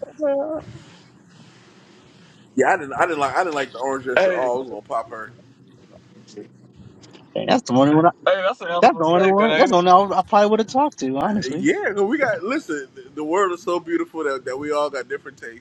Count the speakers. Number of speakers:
3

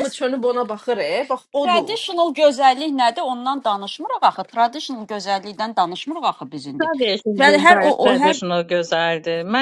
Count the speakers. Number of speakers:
3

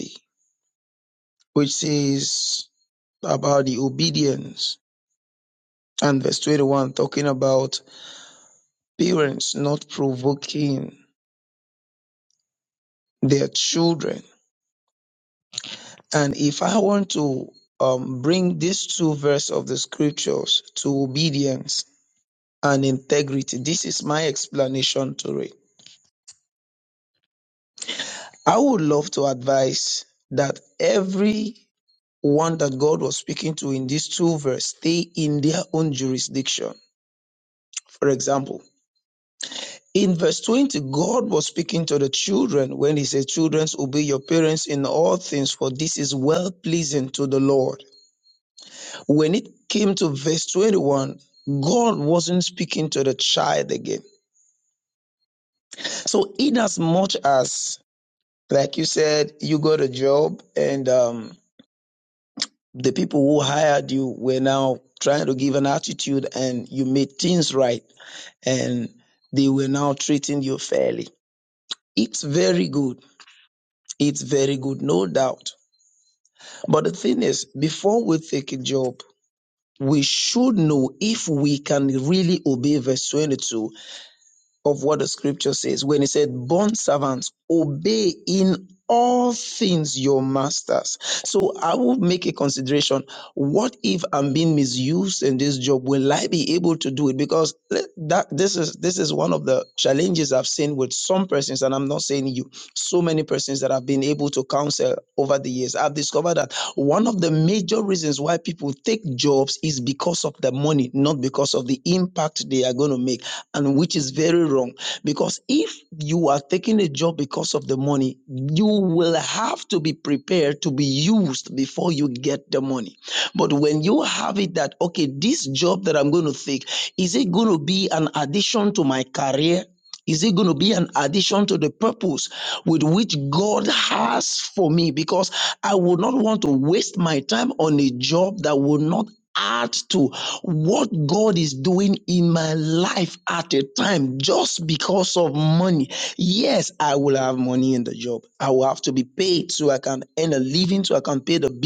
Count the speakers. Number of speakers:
1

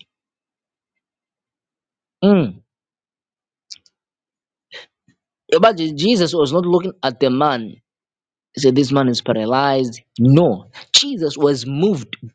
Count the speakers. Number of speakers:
1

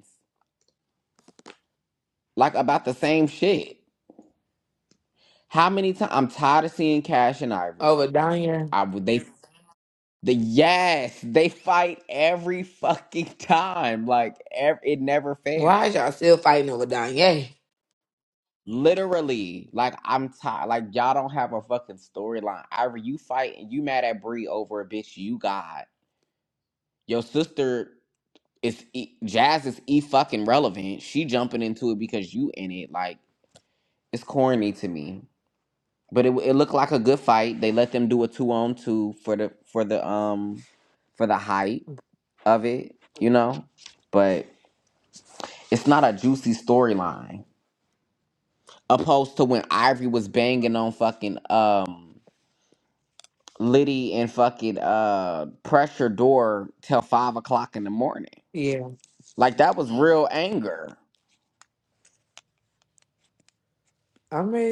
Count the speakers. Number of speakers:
2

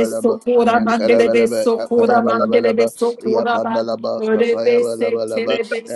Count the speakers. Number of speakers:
2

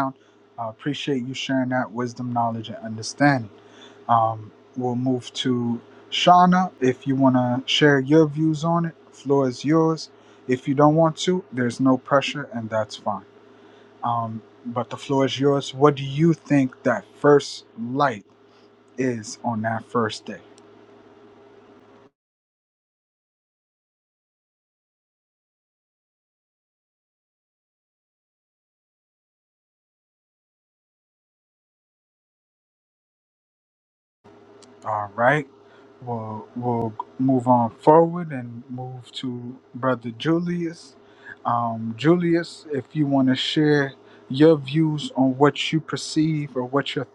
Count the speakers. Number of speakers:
1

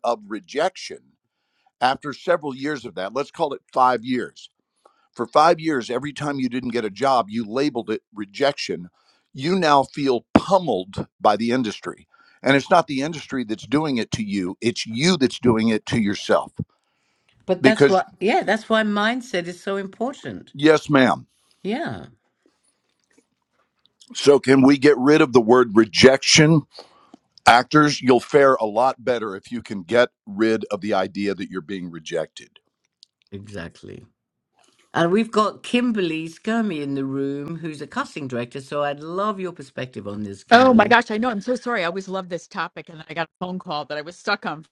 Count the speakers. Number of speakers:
3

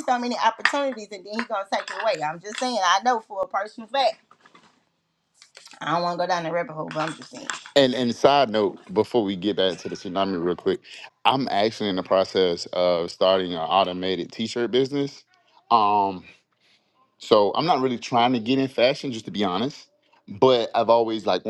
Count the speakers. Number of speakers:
2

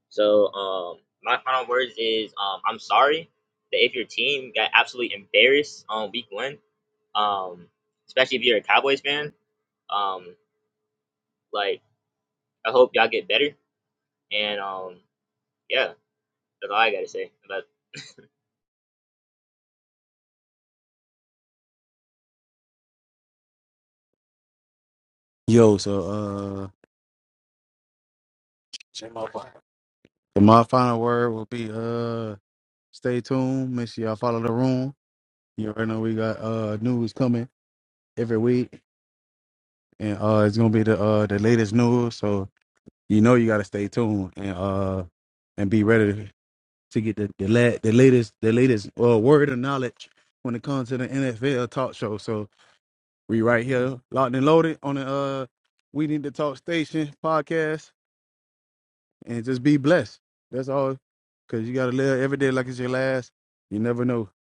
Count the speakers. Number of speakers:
2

